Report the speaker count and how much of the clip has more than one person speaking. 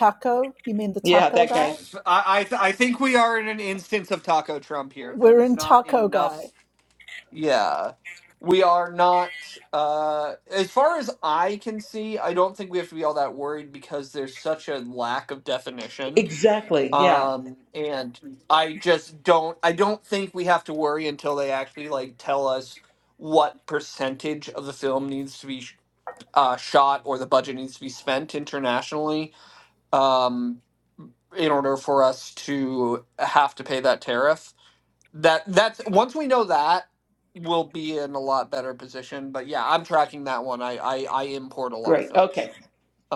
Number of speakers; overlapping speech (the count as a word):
three, about 7%